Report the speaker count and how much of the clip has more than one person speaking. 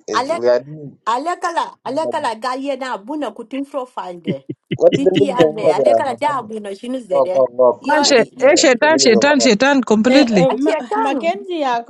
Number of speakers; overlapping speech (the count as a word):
four, about 43%